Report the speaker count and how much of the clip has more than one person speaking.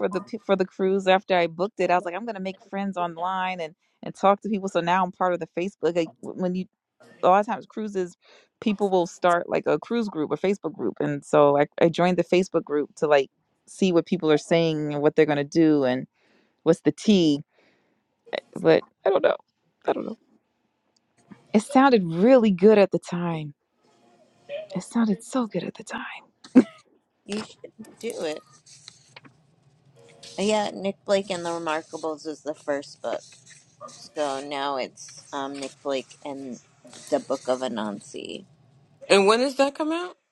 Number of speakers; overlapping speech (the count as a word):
three, no overlap